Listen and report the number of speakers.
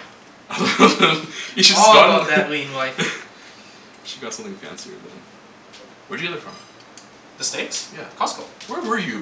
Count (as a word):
two